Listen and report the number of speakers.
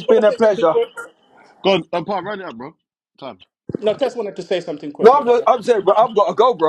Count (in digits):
3